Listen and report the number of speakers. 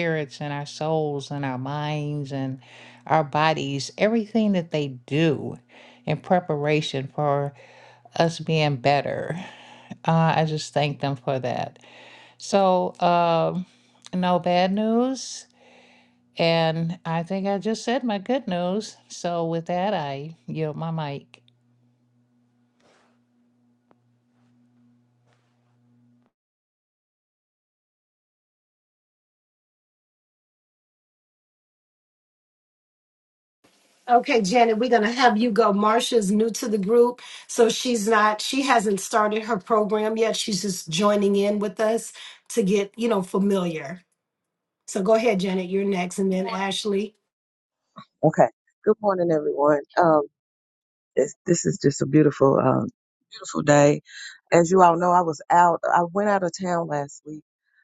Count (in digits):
3